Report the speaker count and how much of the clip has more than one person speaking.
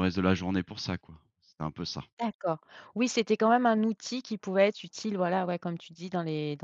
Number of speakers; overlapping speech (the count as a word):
two, no overlap